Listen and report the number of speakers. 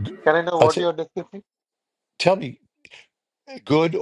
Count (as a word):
two